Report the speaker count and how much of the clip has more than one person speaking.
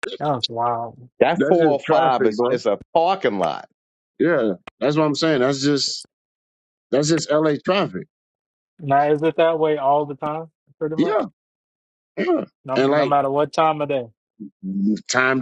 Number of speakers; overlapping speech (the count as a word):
three, about 12%